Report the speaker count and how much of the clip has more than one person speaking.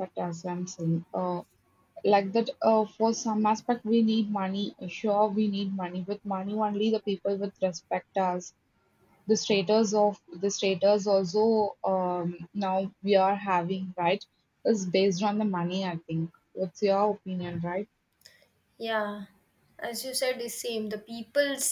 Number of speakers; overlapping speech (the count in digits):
2, no overlap